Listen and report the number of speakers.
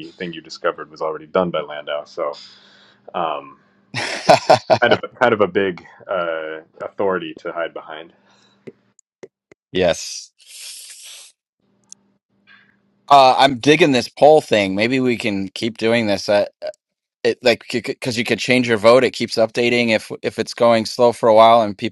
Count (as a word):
two